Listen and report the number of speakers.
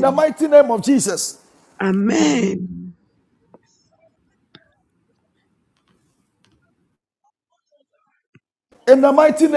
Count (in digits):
2